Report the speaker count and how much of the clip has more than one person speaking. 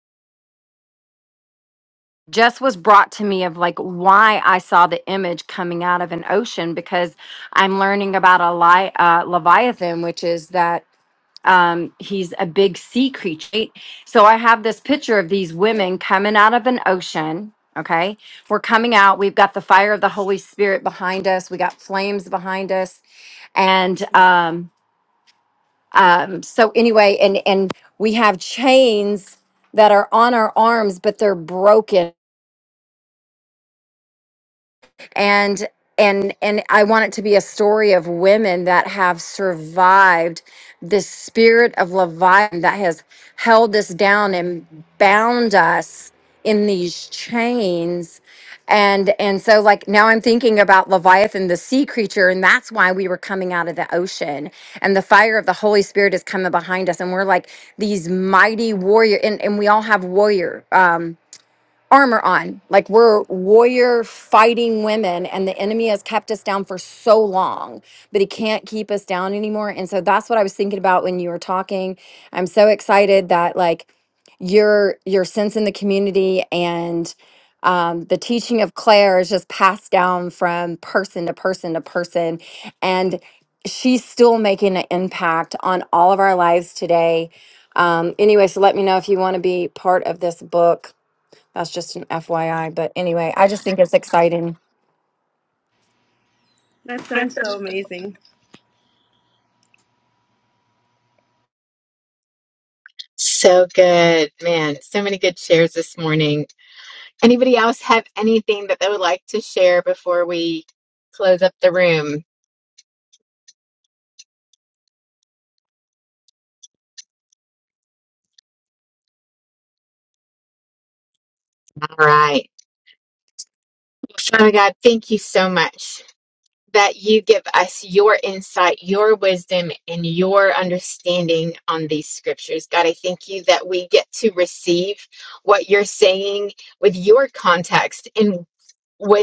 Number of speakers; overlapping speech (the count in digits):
3, no overlap